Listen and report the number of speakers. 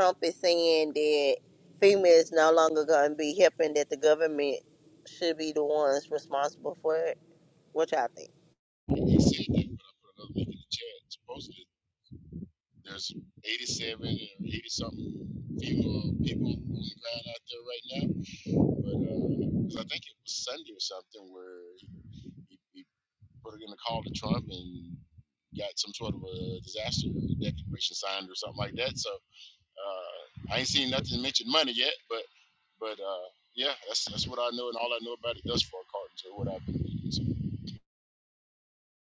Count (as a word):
two